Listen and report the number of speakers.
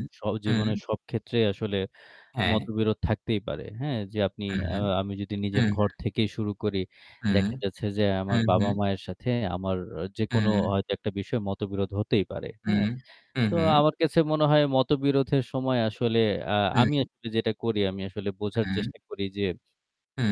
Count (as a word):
two